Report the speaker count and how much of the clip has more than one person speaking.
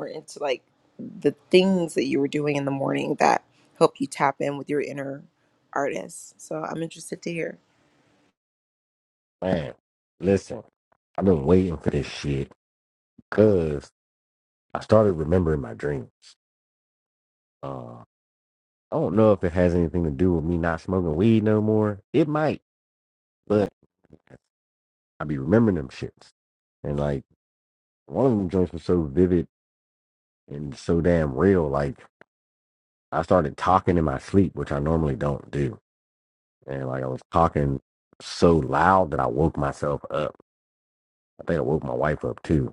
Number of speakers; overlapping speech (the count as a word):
two, no overlap